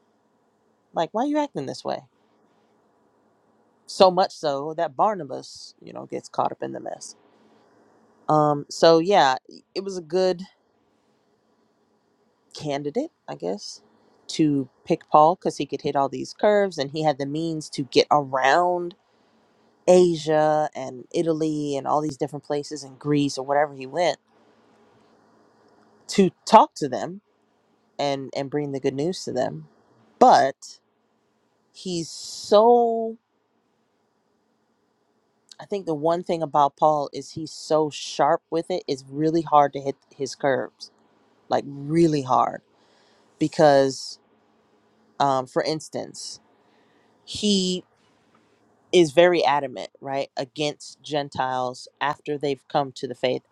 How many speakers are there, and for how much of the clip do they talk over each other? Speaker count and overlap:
1, no overlap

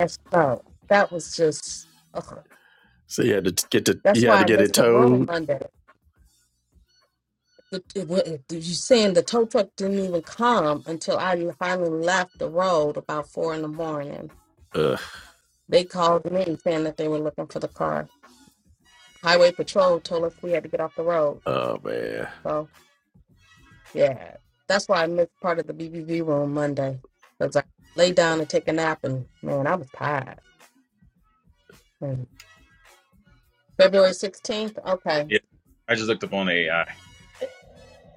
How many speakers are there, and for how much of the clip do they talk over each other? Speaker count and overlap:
3, about 3%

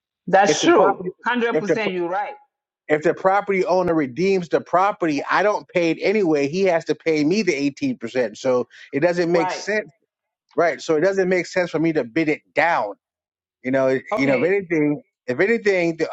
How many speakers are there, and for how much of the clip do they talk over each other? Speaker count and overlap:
2, about 11%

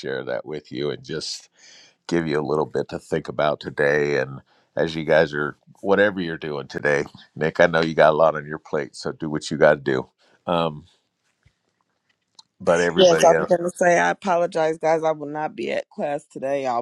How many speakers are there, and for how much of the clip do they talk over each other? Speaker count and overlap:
2, about 3%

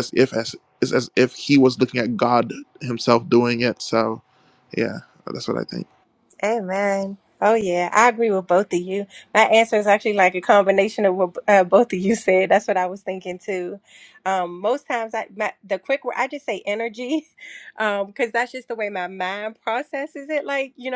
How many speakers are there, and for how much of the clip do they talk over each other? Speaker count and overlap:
2, no overlap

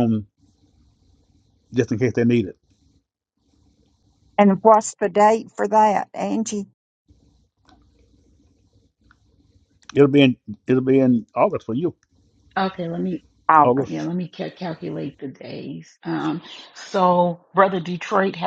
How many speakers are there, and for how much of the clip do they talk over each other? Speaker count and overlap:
3, about 1%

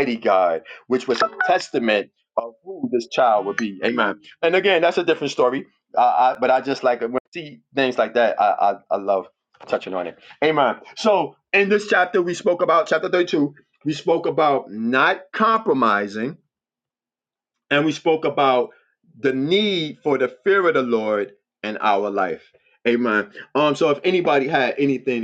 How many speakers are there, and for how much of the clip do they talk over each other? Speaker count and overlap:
1, no overlap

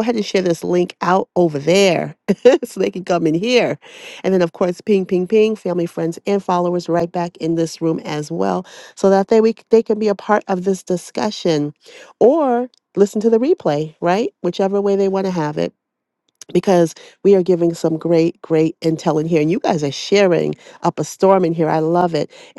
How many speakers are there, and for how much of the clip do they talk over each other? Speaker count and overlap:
1, no overlap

